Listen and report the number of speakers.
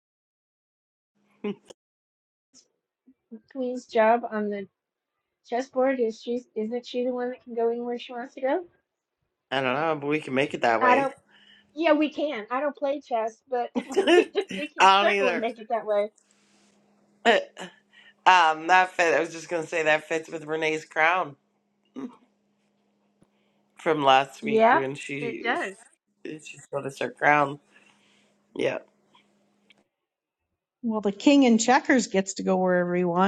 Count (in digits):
3